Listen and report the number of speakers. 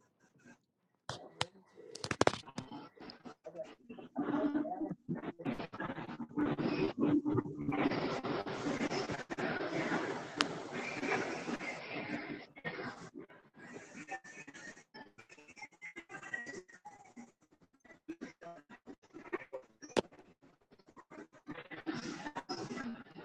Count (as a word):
zero